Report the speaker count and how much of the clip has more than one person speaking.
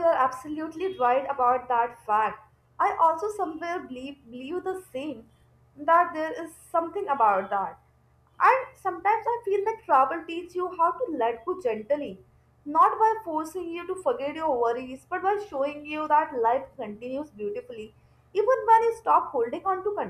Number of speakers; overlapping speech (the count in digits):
1, no overlap